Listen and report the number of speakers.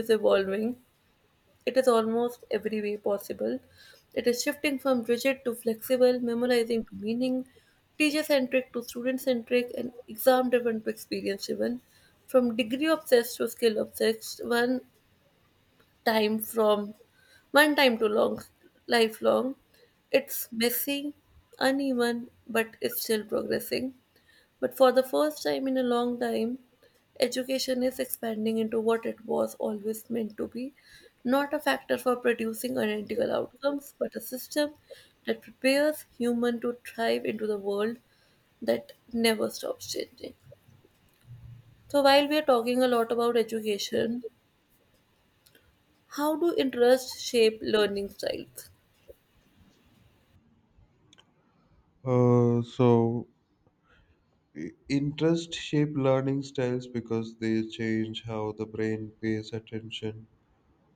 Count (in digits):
2